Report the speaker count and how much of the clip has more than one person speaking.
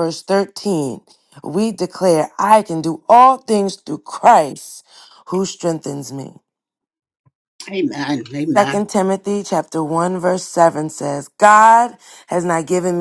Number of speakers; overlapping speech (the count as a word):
two, about 2%